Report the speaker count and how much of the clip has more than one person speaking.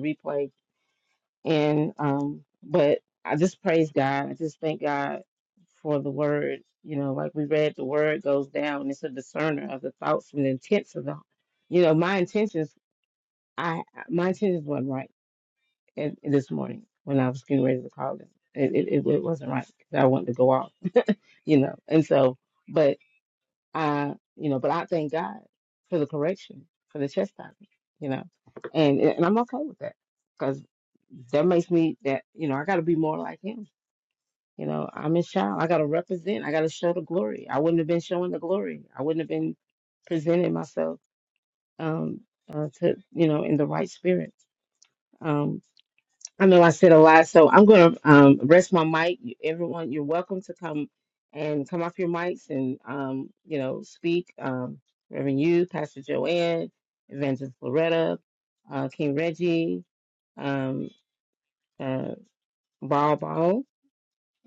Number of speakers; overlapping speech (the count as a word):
one, no overlap